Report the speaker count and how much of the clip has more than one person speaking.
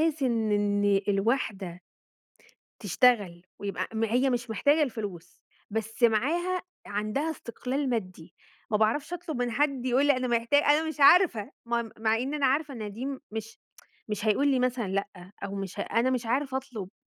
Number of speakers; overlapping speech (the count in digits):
1, no overlap